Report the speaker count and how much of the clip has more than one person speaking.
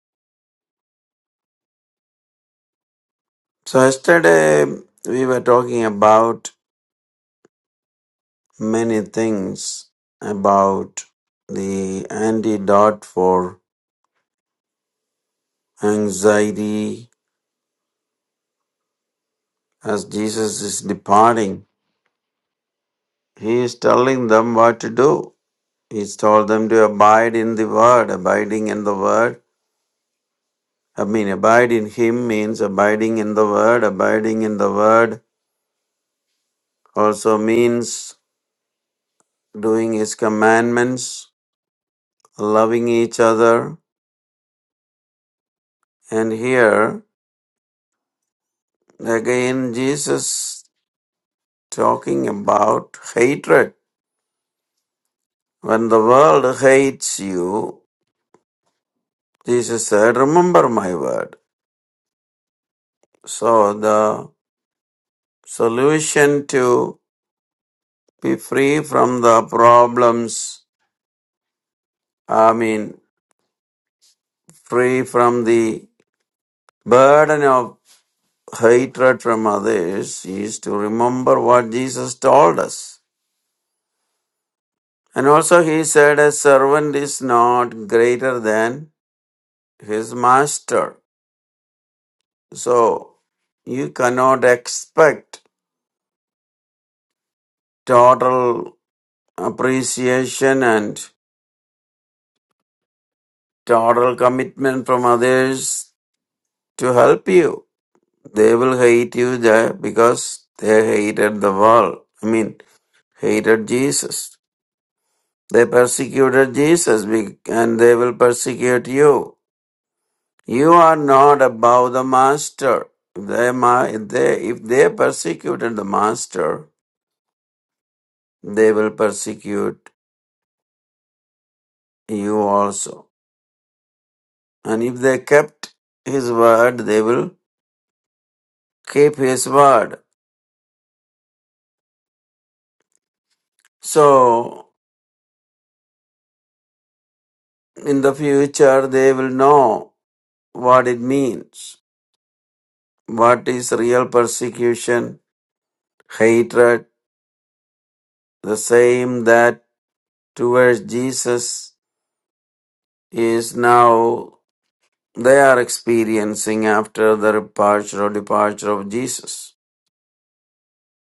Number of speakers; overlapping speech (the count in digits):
1, no overlap